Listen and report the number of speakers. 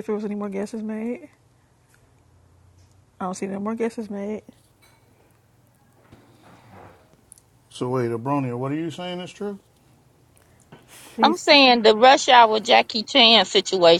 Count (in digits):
3